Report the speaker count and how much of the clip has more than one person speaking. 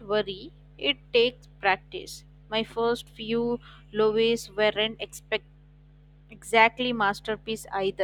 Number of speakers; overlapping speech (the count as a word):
one, no overlap